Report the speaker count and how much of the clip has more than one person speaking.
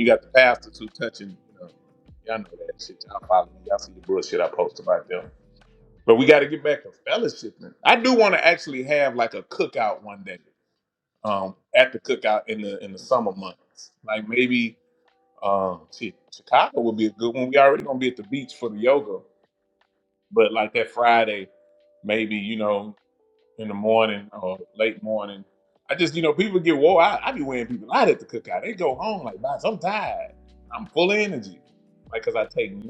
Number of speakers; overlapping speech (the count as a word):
one, no overlap